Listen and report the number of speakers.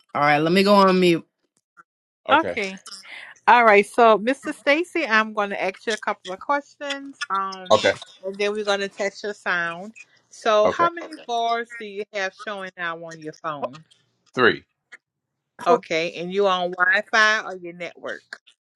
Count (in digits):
3